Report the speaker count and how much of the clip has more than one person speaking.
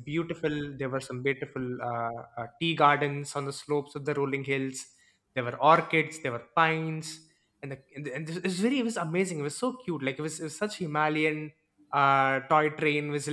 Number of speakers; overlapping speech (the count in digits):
1, no overlap